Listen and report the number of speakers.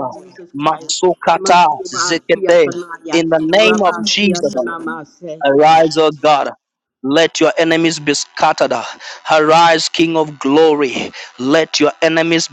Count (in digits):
2